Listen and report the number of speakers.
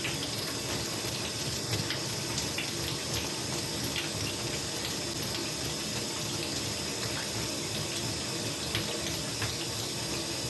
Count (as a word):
zero